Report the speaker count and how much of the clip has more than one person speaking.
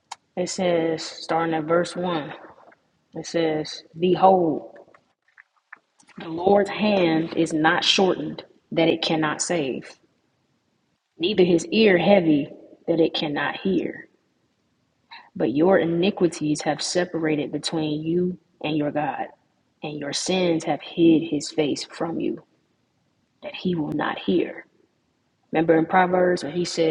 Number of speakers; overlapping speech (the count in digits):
1, no overlap